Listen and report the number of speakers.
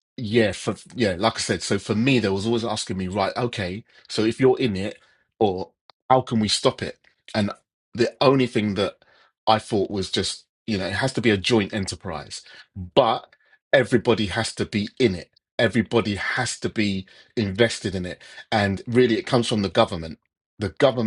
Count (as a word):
one